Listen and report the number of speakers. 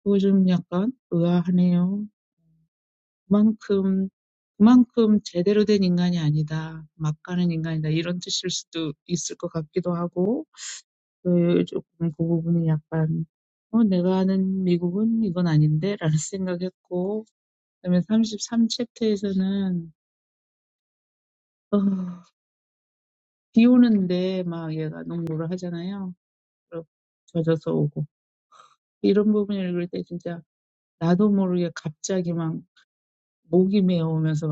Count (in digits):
1